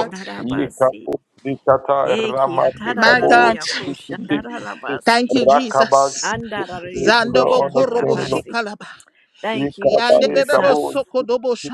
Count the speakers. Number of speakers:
3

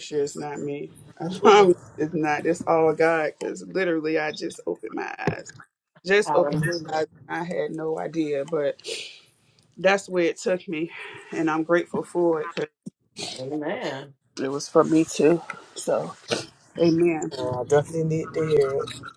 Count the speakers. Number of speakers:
3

